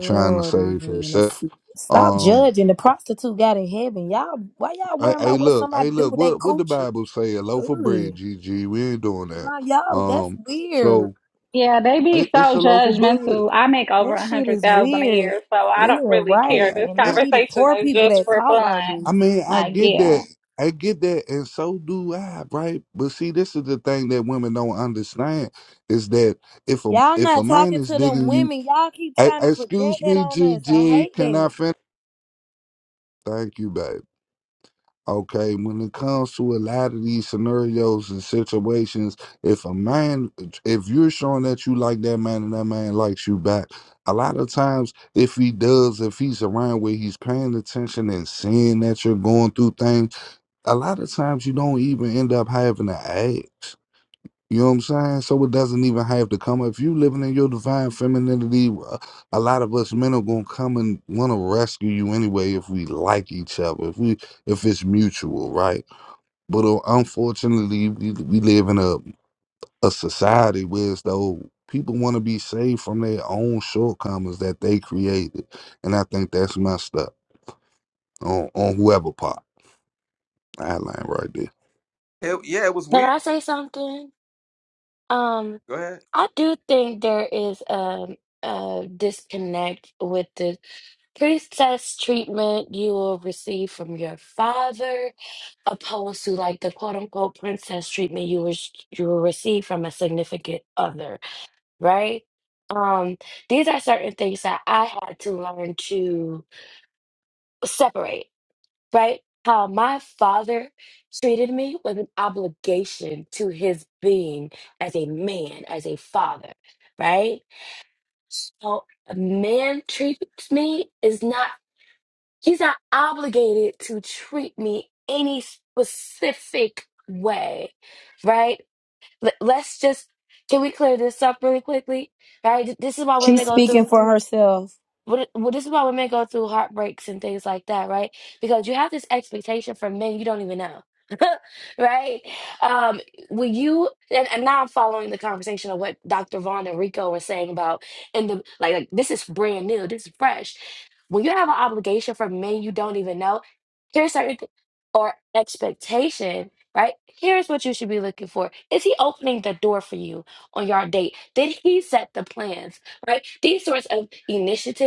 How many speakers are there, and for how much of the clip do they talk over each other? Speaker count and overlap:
five, about 10%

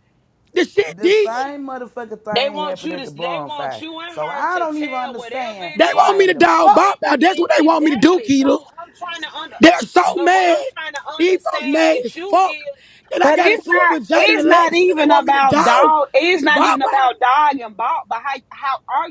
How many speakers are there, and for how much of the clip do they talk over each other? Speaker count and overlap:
four, about 60%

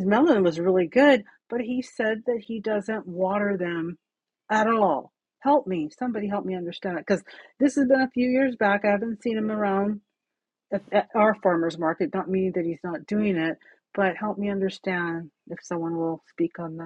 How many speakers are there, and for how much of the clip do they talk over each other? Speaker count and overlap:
one, no overlap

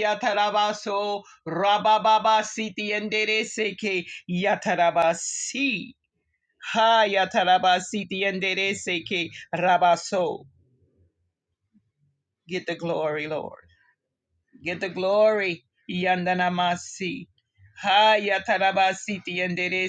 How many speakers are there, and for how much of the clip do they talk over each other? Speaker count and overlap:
one, no overlap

